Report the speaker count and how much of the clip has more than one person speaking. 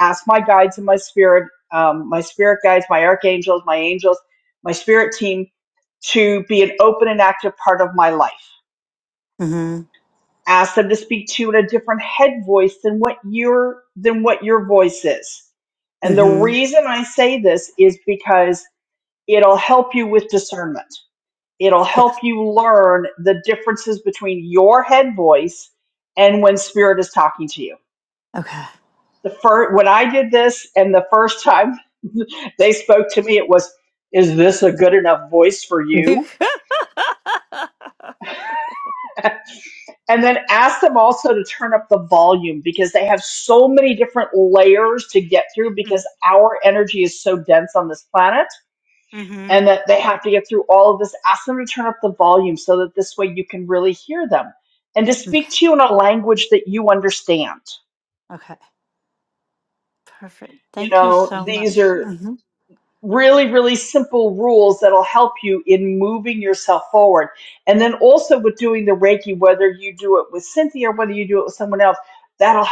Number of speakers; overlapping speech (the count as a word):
two, about 3%